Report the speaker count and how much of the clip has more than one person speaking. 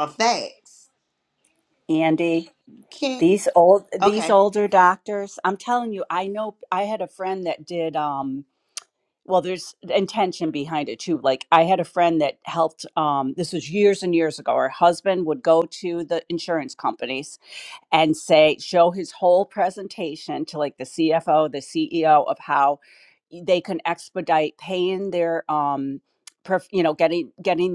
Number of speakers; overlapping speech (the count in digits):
2, about 1%